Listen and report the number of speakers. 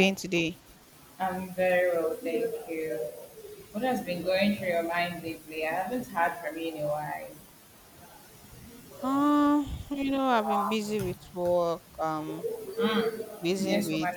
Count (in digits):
2